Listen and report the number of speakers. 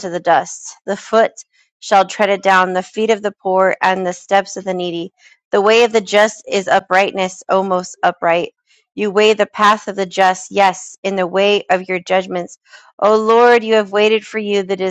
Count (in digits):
1